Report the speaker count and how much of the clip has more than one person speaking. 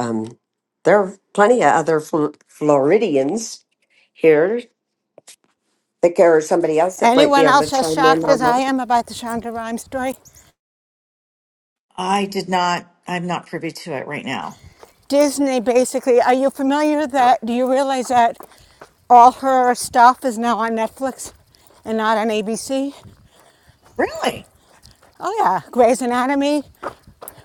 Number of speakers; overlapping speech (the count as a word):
three, about 6%